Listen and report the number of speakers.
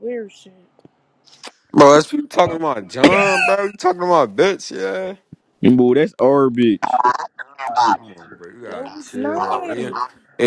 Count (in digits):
3